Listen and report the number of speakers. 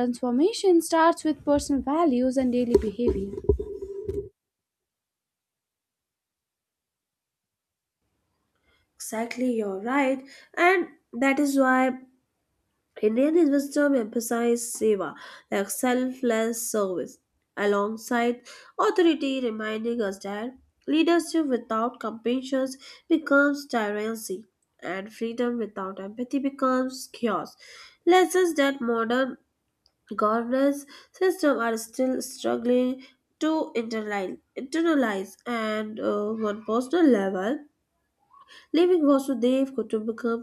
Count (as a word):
two